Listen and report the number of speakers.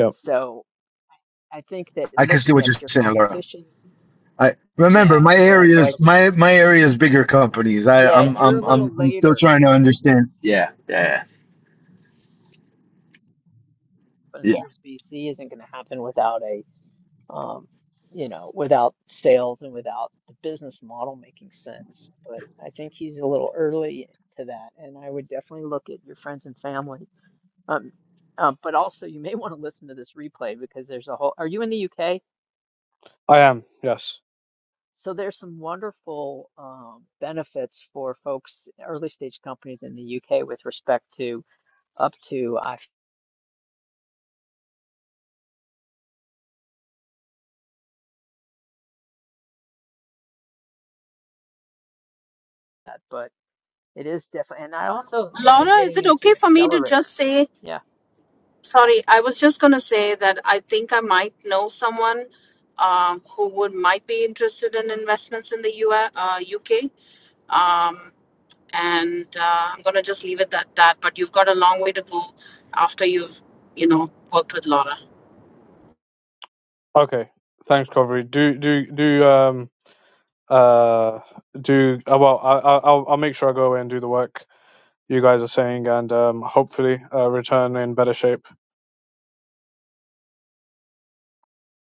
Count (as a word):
four